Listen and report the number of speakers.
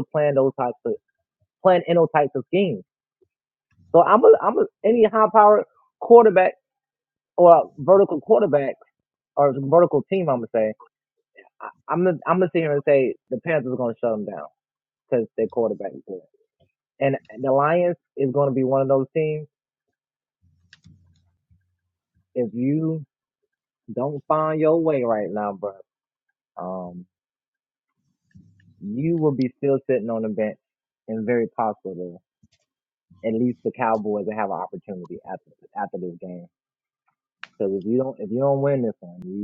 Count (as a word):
one